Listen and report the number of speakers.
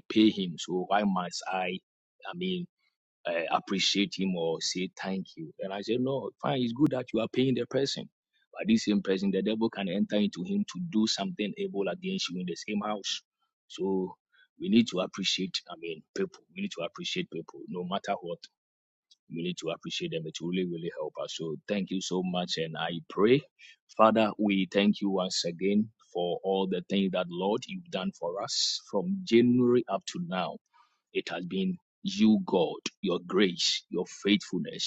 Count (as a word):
one